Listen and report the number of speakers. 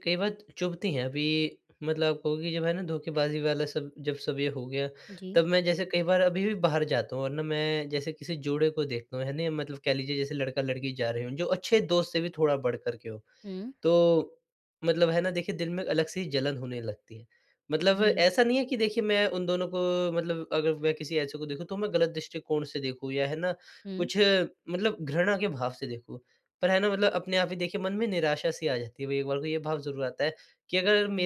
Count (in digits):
2